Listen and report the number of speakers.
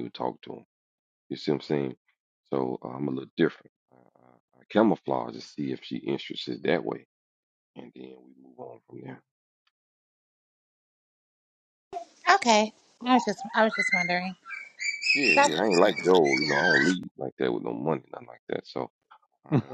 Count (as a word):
two